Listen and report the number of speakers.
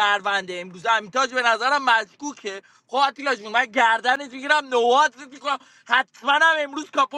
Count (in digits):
1